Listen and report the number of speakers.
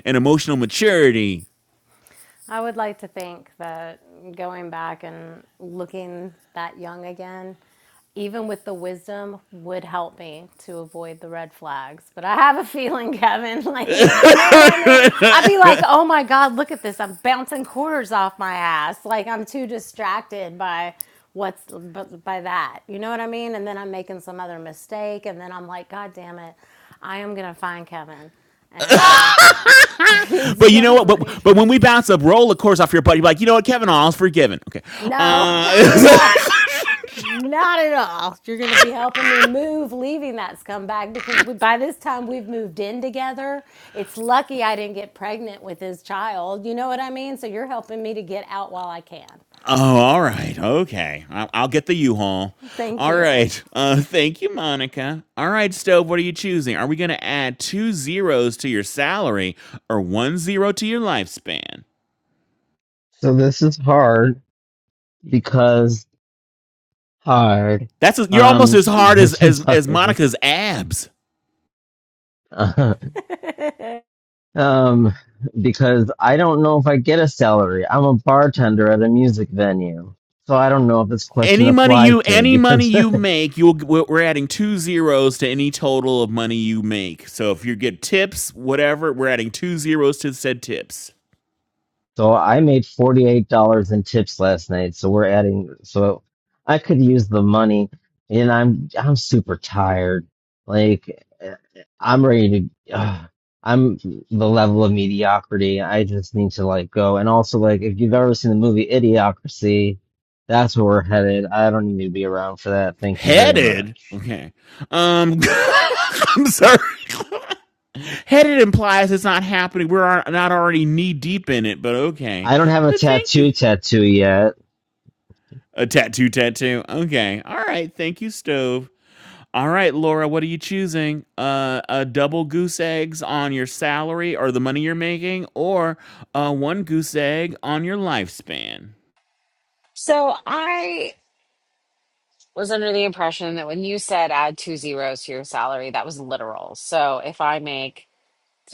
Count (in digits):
4